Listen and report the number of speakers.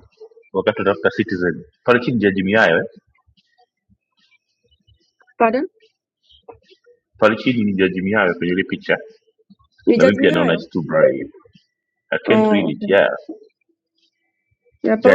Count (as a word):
two